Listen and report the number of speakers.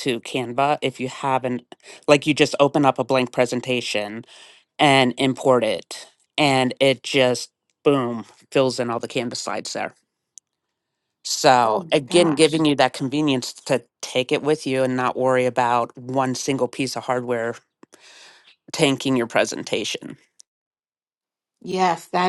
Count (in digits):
2